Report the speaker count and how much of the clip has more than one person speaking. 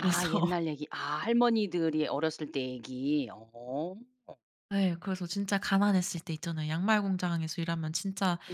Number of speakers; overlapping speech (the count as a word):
two, about 7%